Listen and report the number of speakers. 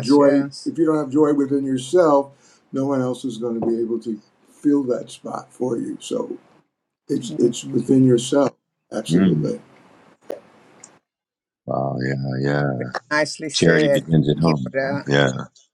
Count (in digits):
3